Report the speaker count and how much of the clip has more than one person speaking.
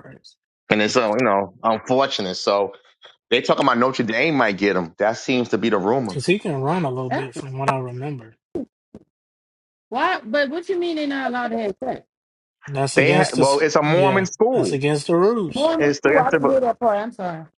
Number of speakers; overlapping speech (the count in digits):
3, about 18%